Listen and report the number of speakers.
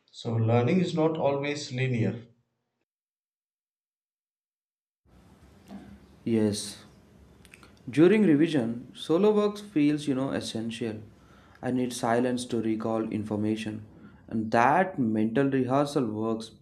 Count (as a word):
two